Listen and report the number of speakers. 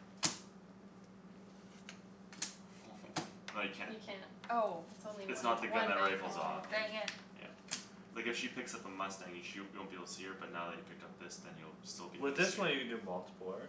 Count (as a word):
four